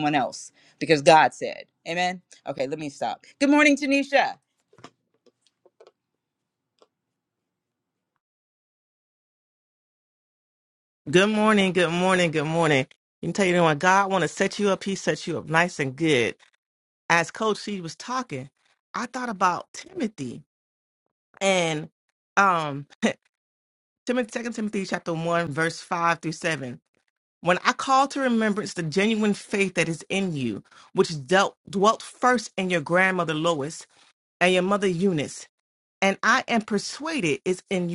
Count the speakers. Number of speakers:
two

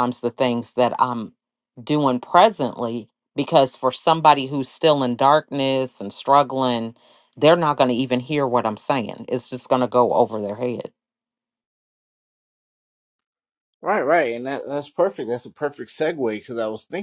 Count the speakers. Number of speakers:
two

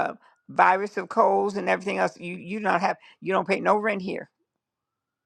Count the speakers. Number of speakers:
one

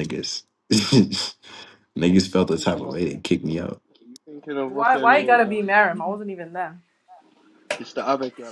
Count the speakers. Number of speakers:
three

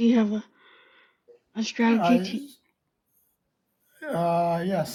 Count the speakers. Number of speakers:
two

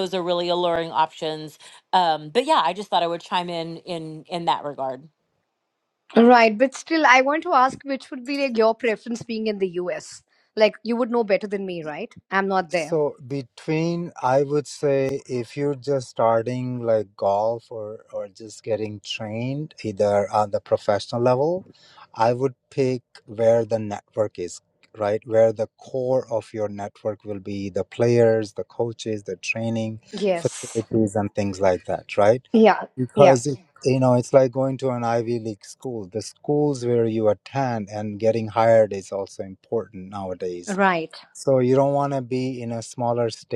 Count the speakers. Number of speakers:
three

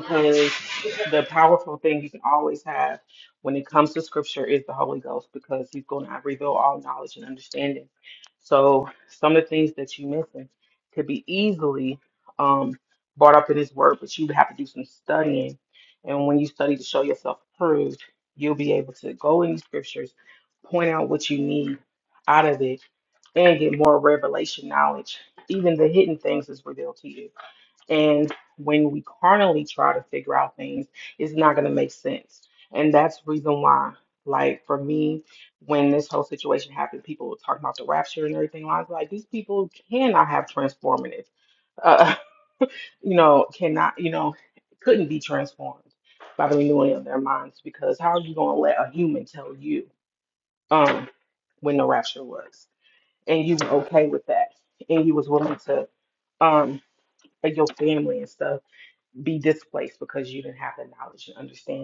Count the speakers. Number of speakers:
one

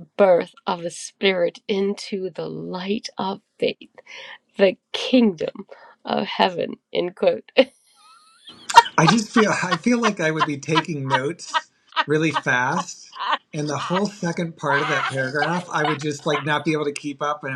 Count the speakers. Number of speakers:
two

